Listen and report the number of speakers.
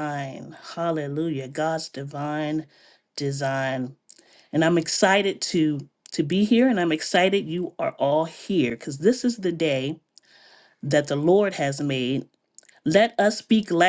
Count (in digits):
1